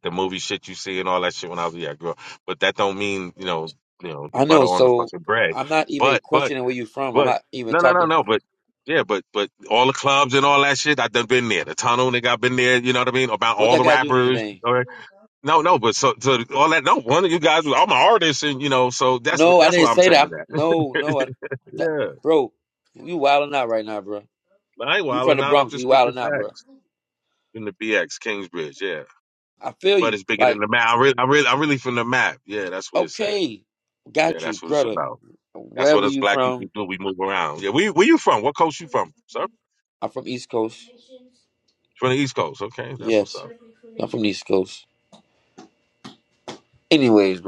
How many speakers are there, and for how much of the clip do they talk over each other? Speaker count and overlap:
2, about 19%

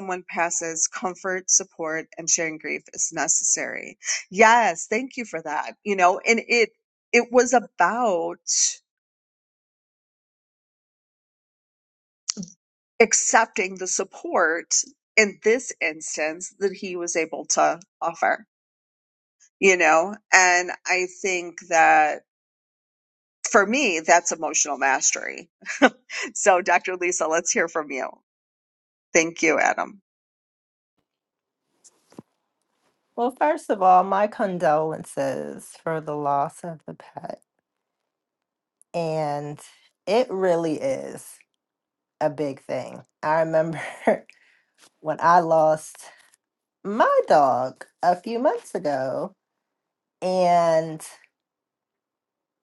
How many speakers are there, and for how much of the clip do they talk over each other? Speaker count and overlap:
2, no overlap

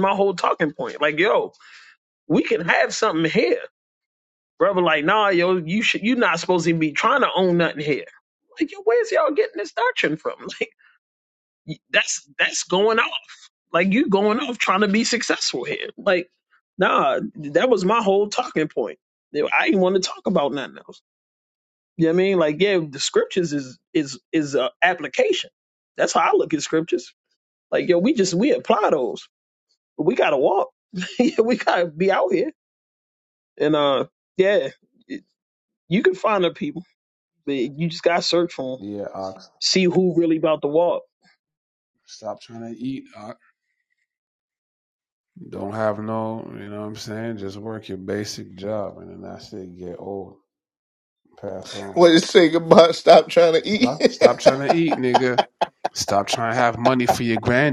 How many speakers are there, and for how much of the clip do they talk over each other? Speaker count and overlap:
3, about 1%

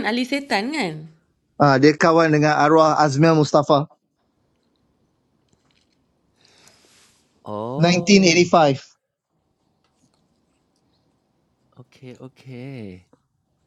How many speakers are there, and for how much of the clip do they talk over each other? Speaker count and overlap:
3, about 5%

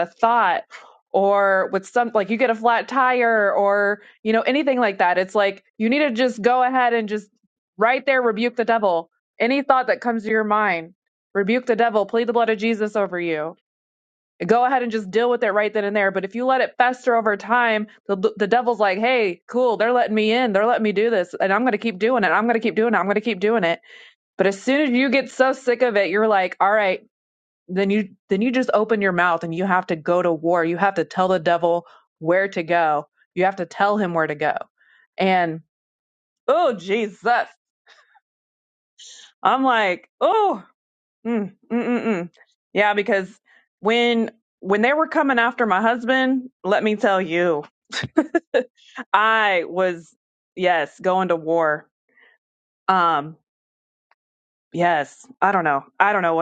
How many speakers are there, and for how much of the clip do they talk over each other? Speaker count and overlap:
1, no overlap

